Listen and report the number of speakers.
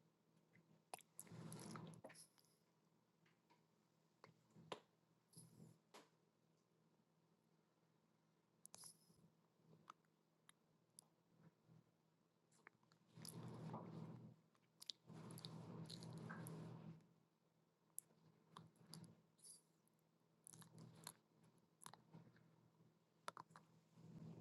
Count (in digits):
0